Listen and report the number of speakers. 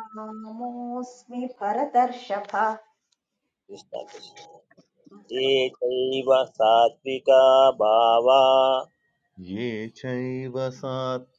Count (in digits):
3